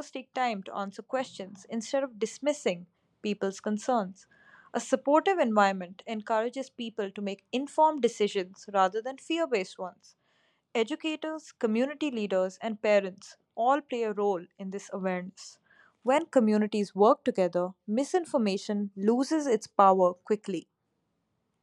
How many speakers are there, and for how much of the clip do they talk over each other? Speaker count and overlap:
1, no overlap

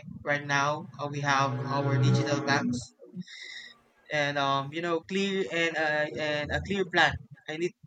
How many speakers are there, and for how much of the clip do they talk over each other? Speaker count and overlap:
1, no overlap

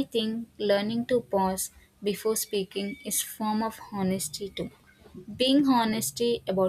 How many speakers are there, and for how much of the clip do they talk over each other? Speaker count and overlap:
1, no overlap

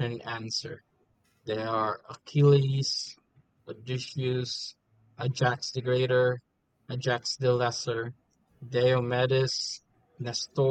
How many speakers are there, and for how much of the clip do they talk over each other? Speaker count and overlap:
1, no overlap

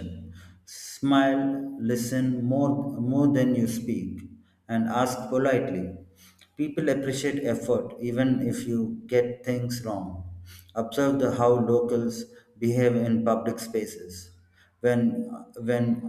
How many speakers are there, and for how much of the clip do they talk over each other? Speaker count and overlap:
1, no overlap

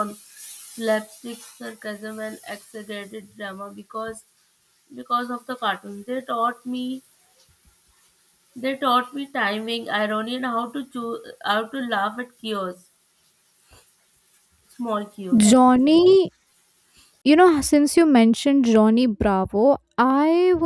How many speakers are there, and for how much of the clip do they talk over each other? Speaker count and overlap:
2, under 1%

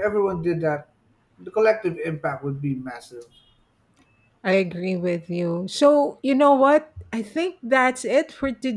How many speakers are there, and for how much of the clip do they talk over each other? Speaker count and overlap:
2, no overlap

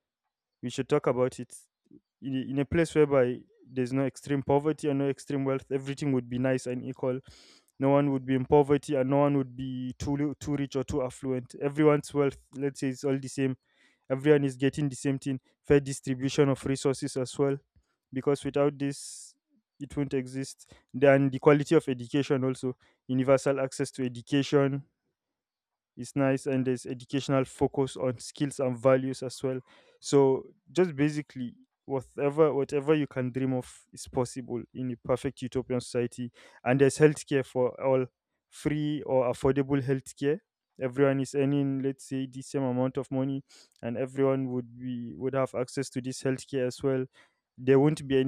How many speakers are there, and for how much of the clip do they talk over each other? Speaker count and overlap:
1, no overlap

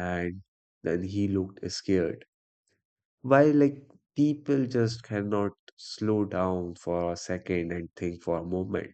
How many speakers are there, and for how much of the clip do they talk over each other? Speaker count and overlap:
1, no overlap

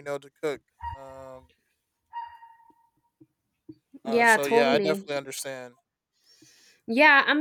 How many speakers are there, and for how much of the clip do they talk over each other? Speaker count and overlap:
2, about 13%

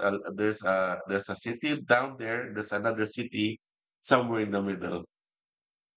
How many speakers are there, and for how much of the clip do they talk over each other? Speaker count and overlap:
1, no overlap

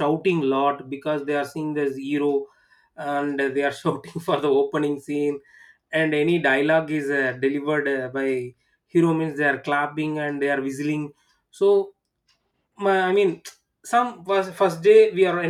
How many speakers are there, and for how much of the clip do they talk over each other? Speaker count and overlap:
1, no overlap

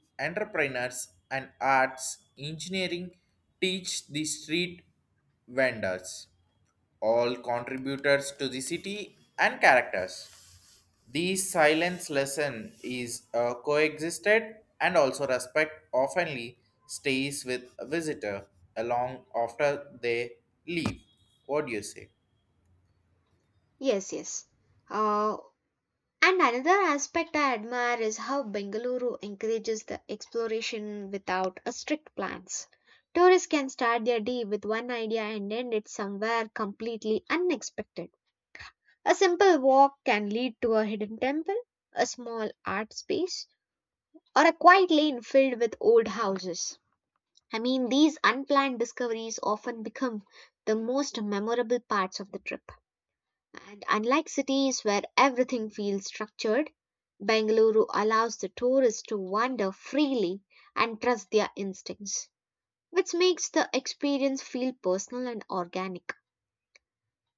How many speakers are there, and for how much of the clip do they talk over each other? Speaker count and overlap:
2, no overlap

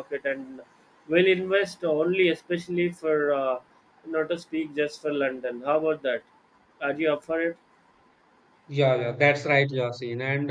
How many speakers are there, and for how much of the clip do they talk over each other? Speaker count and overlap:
2, no overlap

